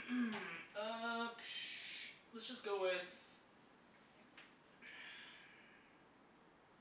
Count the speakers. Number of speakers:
1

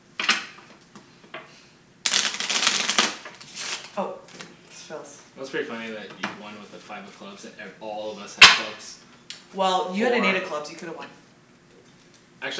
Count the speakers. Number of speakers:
2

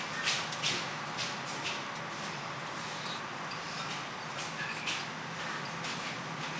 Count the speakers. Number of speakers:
0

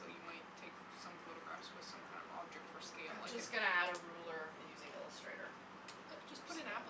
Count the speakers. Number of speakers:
2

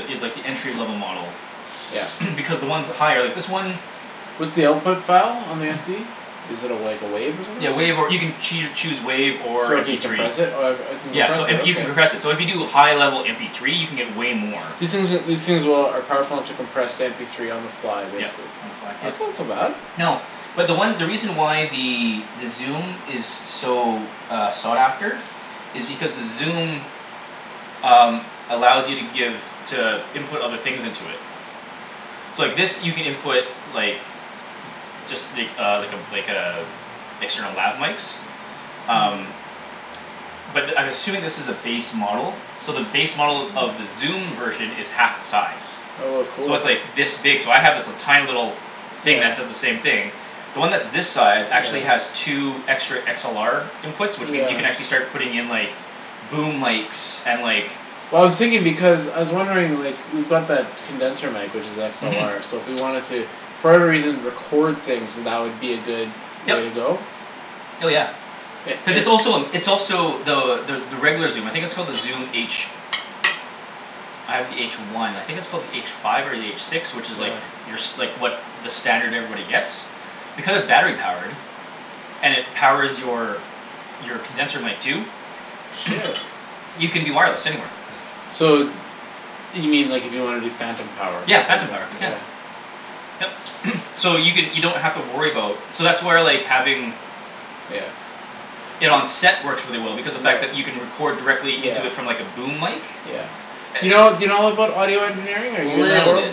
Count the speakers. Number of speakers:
2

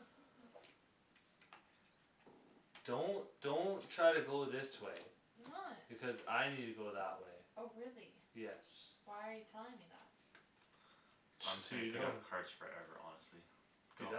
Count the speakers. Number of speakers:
3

